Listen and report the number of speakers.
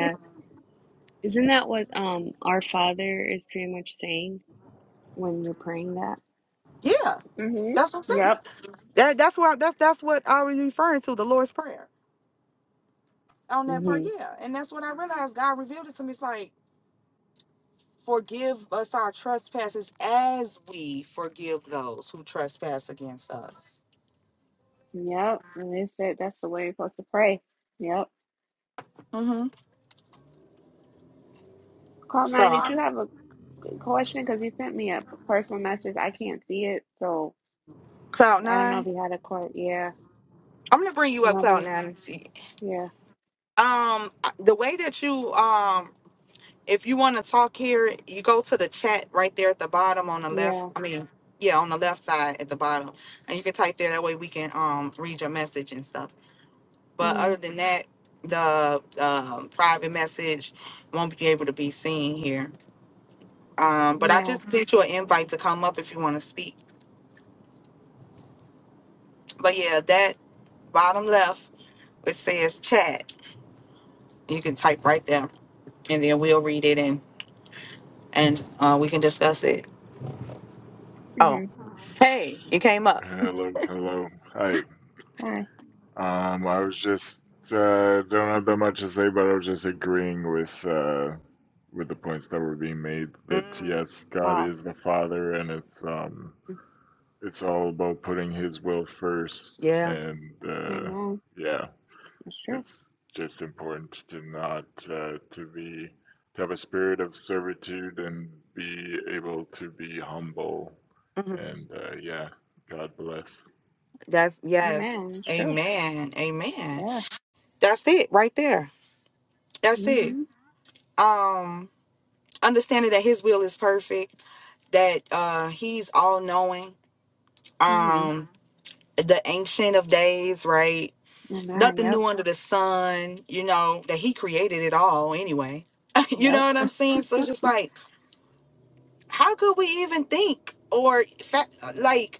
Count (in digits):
4